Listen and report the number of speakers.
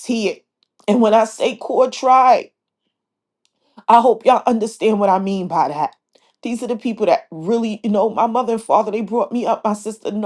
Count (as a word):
one